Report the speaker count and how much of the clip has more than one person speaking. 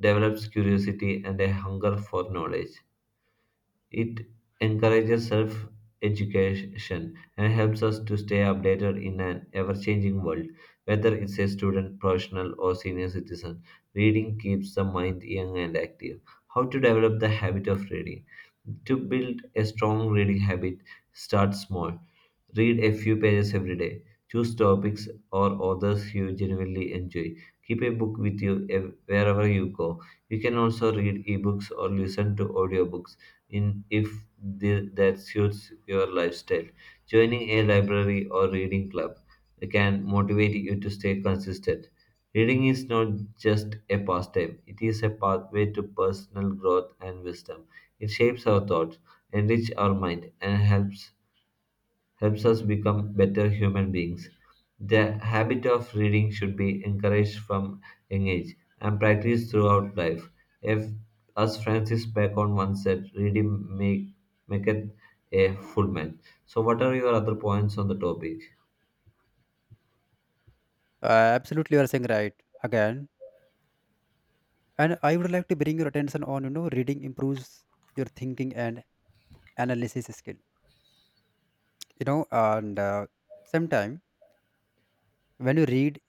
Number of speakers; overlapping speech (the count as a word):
two, no overlap